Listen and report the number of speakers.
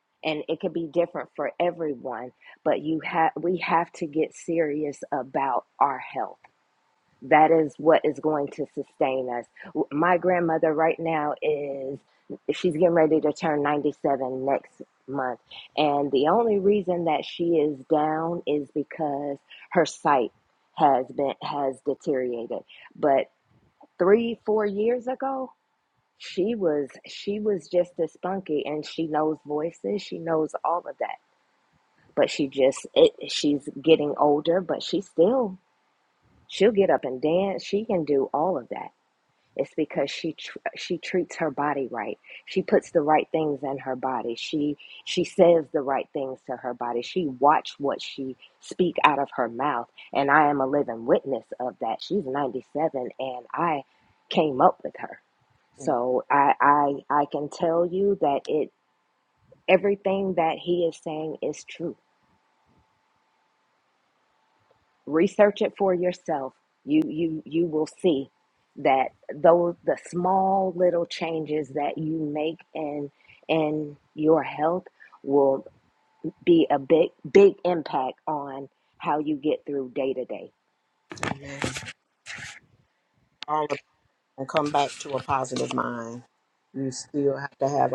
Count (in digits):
2